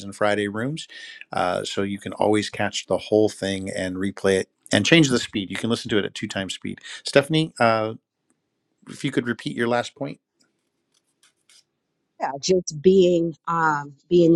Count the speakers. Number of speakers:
2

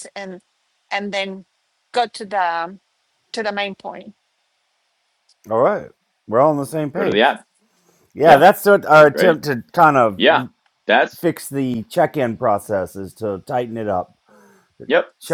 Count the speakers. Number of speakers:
3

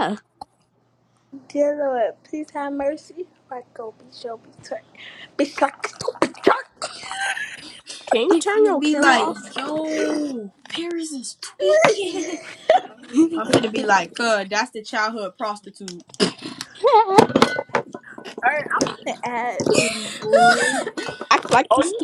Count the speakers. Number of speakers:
3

